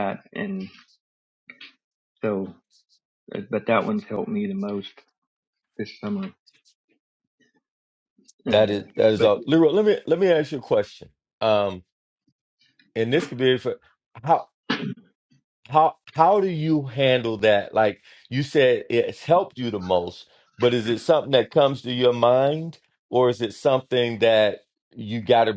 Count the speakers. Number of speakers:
two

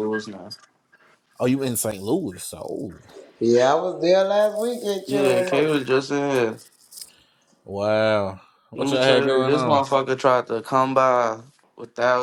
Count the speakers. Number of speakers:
three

